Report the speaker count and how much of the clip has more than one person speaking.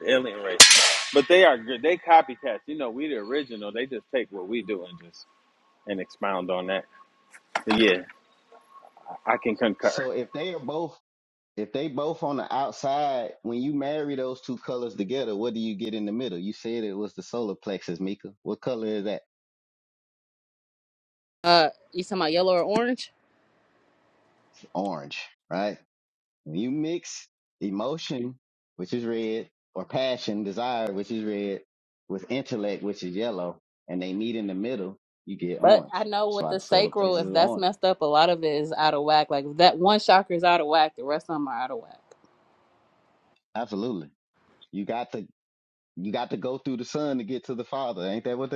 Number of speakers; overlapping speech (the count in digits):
3, about 5%